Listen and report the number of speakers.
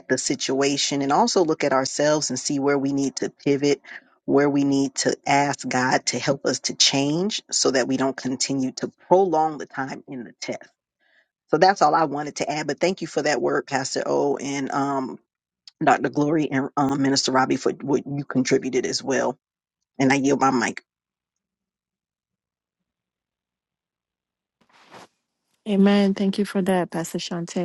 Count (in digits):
2